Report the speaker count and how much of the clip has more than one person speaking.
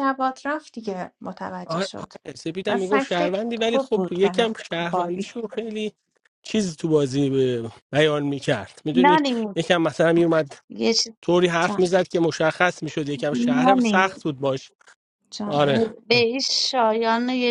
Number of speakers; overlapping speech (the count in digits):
3, about 25%